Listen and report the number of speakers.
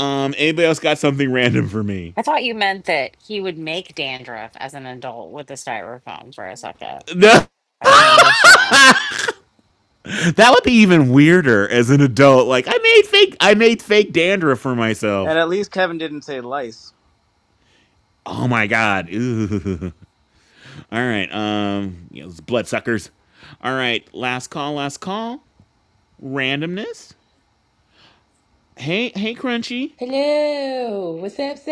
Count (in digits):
4